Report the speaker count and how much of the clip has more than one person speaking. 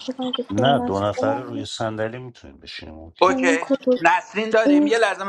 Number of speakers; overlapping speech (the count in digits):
3, about 43%